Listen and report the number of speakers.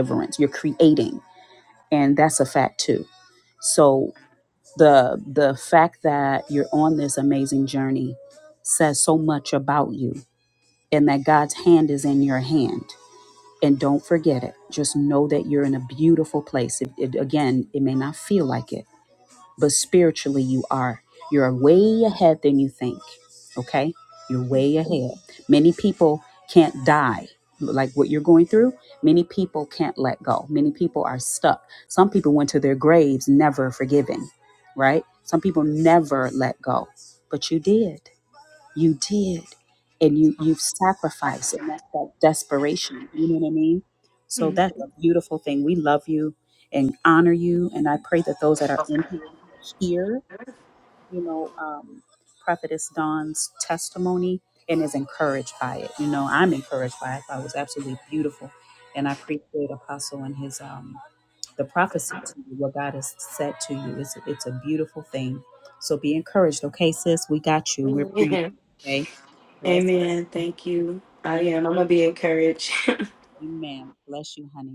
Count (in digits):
2